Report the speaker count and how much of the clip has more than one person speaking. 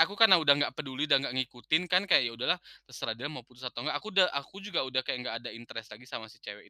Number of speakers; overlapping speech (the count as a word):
one, no overlap